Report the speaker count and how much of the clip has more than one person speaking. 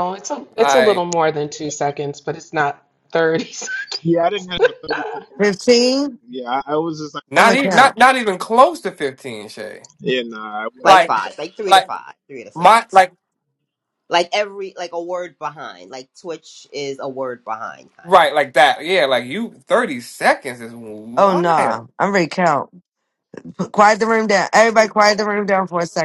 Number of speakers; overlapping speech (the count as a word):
five, about 12%